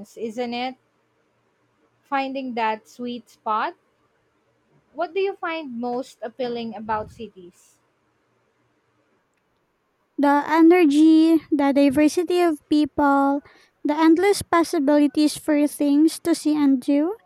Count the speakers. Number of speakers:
2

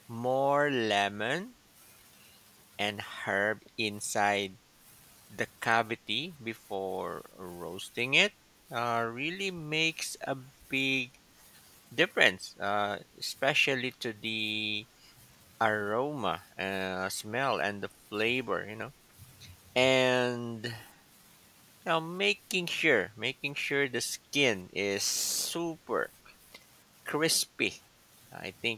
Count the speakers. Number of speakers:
1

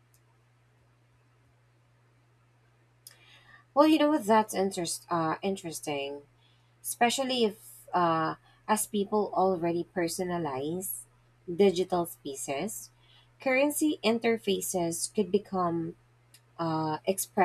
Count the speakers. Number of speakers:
1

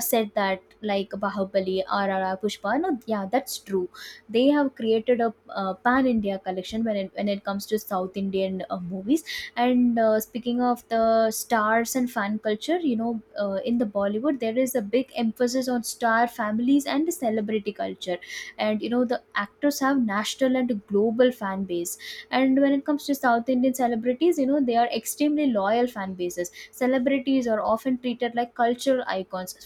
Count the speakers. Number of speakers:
1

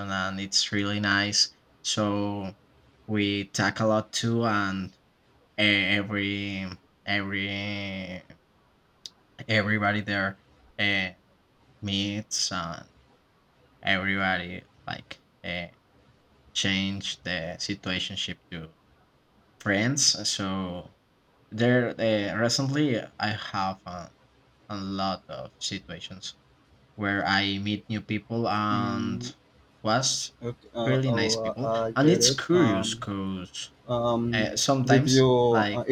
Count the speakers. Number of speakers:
2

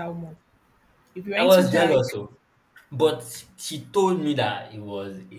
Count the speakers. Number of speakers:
2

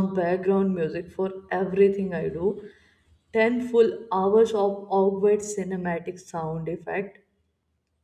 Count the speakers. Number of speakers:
1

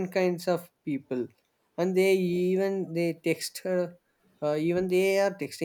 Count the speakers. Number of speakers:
1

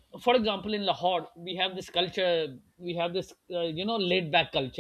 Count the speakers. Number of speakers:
1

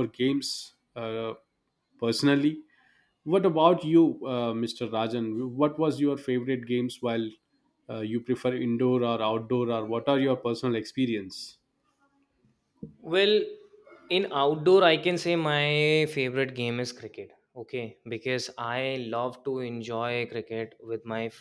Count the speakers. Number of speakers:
2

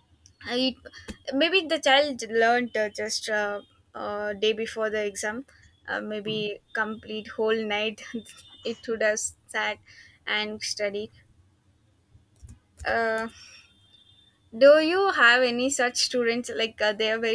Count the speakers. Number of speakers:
1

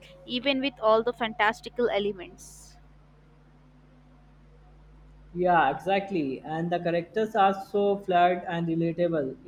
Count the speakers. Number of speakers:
2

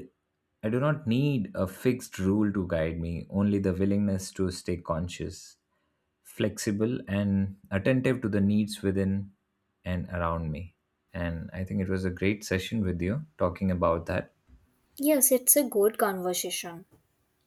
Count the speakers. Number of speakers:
2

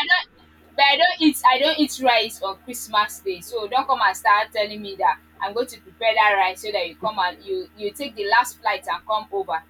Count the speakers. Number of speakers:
1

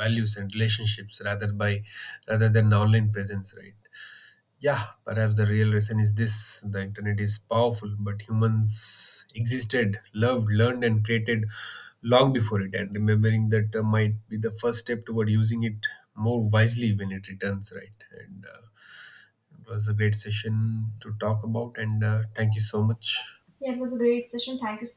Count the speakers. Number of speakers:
2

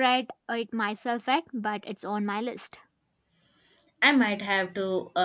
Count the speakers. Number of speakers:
2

